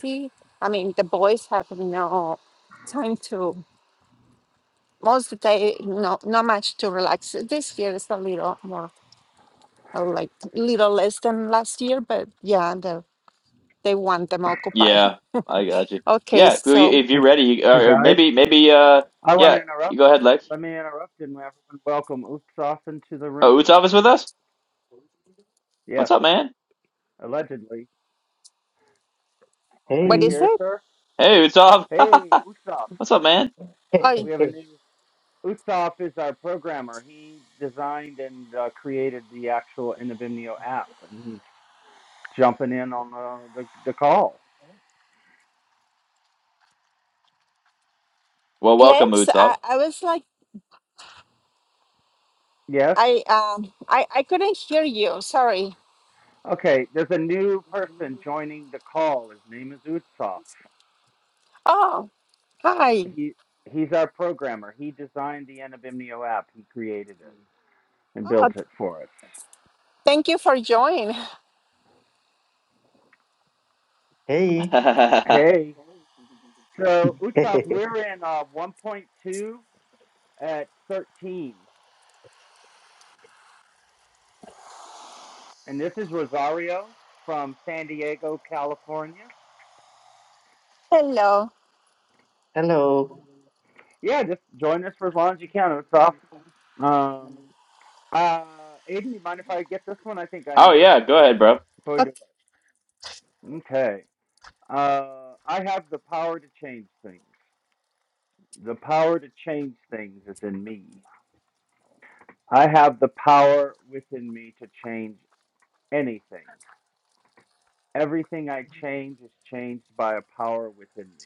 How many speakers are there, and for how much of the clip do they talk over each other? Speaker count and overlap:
4, about 4%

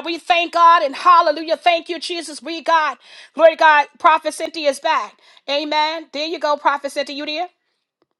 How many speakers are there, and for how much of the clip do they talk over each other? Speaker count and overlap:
1, no overlap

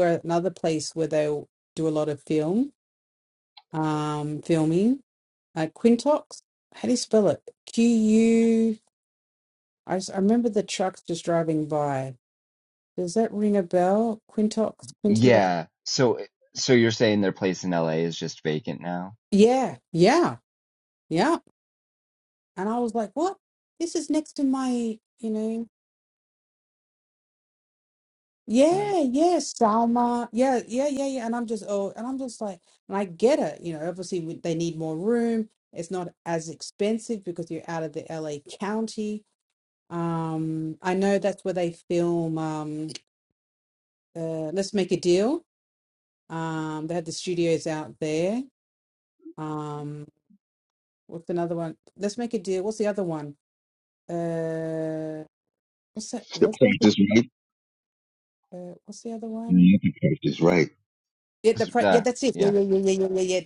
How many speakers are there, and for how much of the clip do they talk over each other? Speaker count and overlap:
3, about 3%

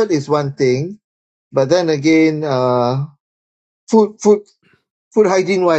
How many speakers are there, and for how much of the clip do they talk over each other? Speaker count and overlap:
1, no overlap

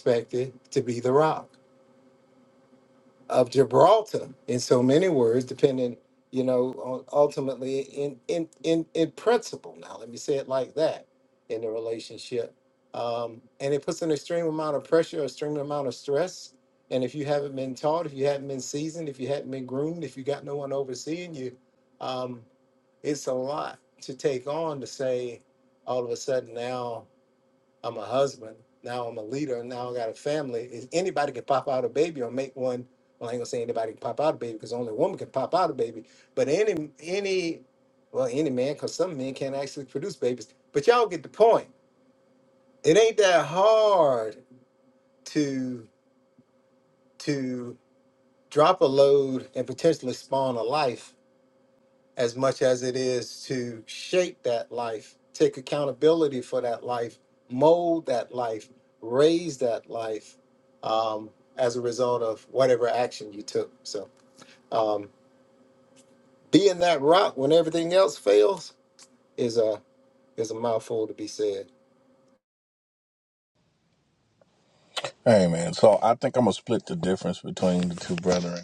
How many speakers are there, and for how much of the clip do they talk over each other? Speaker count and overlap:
2, no overlap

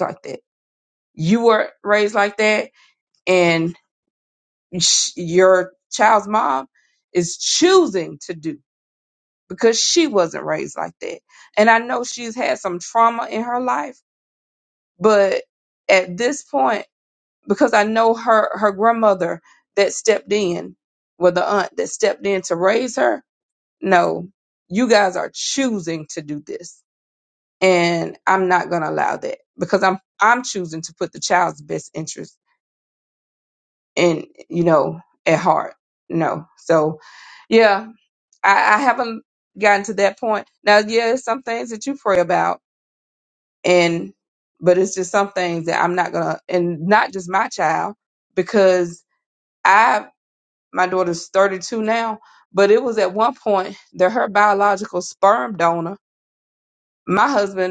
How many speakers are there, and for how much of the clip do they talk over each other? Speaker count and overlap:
1, no overlap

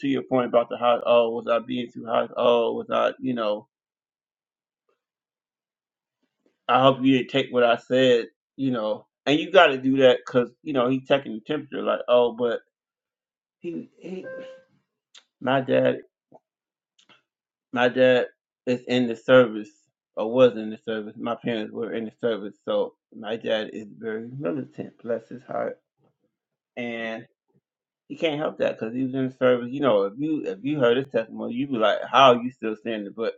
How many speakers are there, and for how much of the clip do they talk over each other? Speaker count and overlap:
1, no overlap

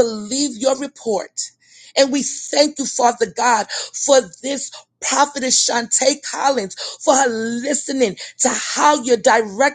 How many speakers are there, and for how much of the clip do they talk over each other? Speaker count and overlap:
1, no overlap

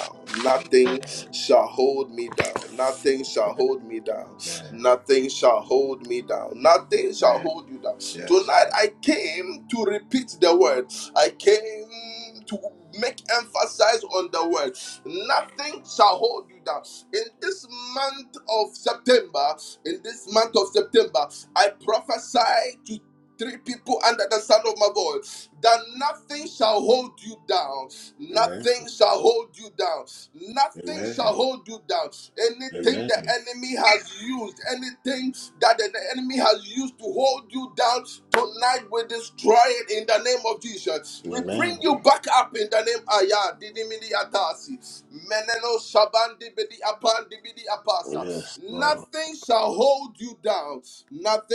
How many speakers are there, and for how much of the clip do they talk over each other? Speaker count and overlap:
2, about 7%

